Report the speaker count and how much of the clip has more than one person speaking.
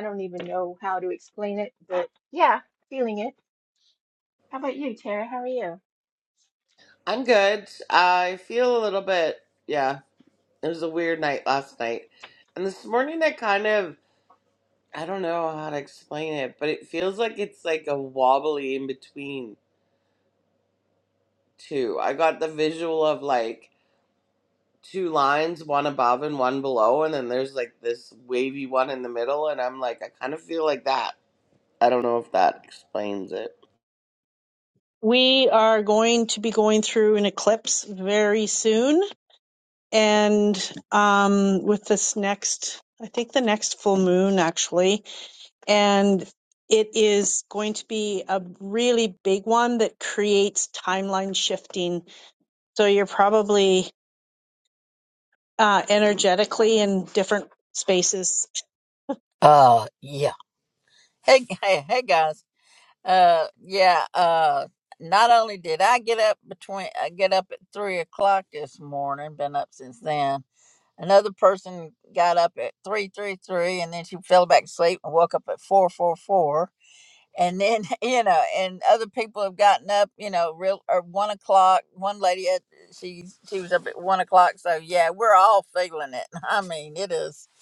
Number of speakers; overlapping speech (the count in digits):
4, no overlap